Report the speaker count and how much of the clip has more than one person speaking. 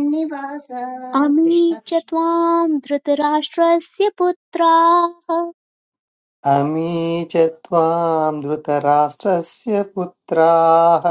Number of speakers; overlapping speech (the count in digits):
3, about 8%